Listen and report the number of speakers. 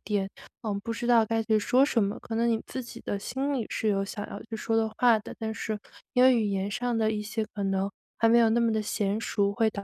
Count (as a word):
one